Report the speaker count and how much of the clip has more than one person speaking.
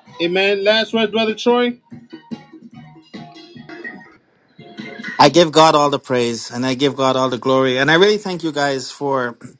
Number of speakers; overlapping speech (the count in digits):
2, no overlap